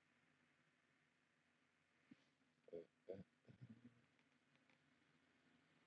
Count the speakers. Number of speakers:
zero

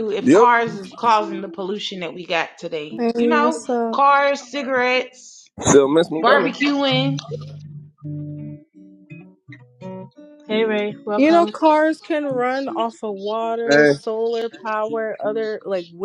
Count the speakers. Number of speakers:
four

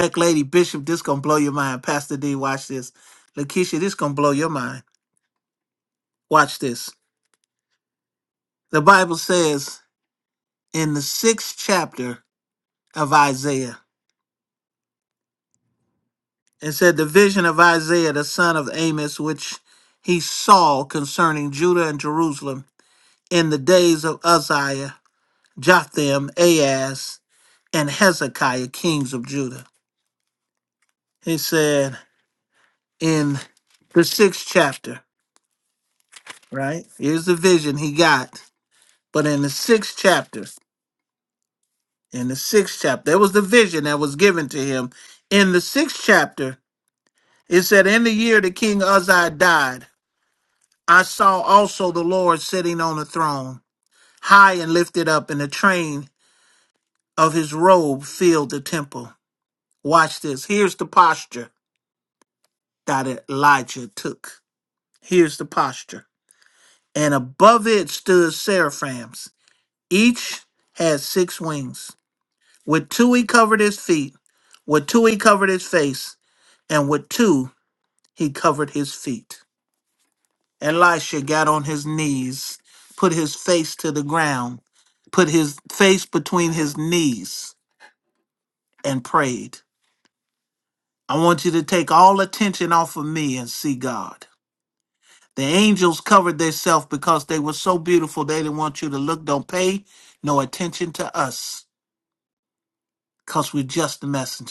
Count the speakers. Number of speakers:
one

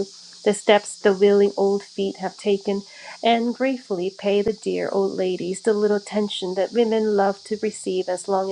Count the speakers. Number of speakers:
one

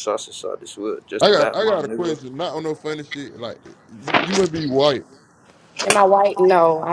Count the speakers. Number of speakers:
three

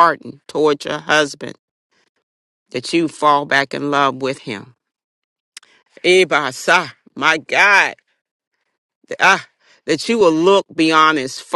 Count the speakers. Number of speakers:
one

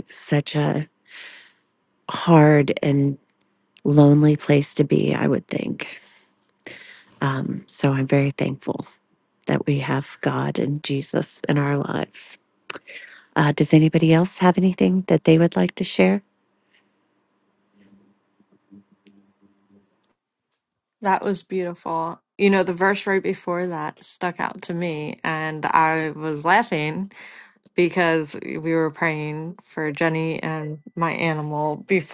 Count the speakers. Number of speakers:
two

